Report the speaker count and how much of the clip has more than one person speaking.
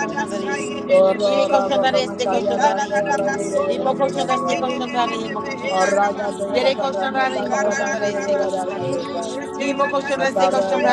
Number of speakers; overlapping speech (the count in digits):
2, about 60%